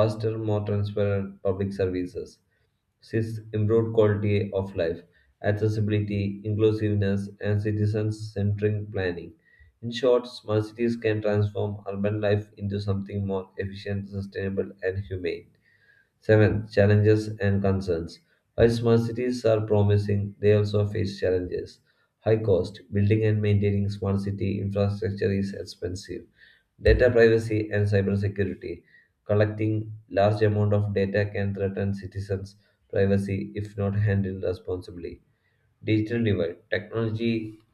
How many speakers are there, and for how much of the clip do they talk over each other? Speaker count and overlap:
one, no overlap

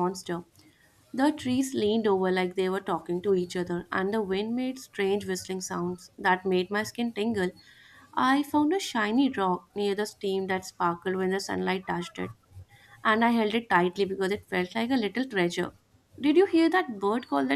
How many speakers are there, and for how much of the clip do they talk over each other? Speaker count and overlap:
one, no overlap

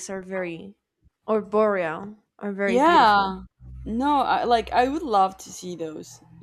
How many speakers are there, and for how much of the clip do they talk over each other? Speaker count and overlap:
two, about 10%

